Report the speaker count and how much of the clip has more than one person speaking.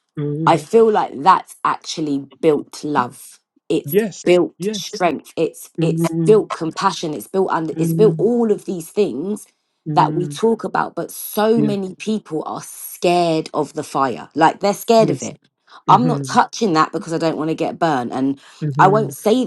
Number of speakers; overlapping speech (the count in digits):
2, about 13%